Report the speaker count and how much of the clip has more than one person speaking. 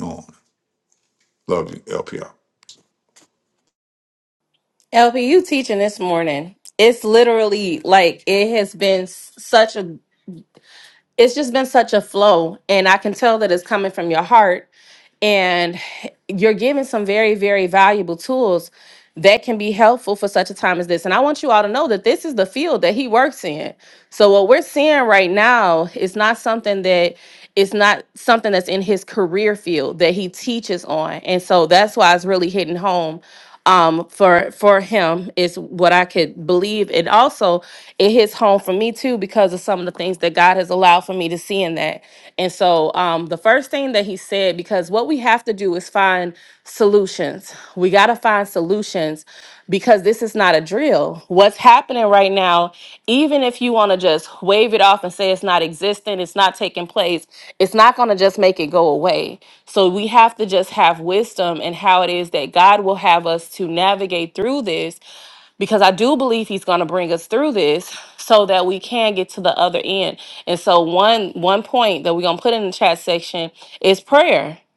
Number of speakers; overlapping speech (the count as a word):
two, no overlap